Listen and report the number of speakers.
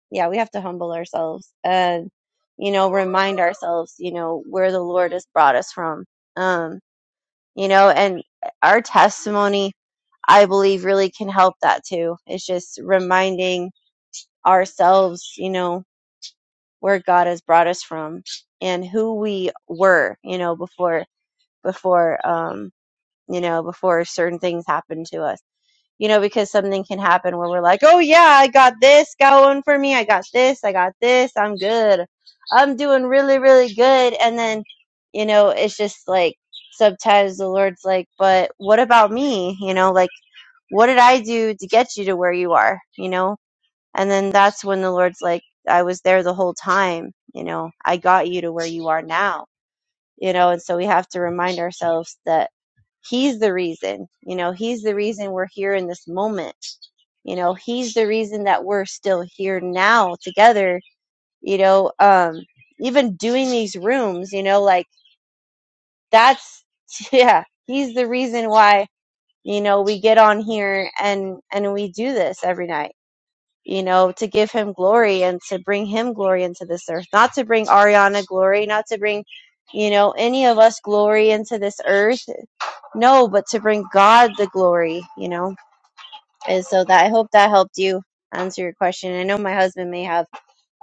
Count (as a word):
one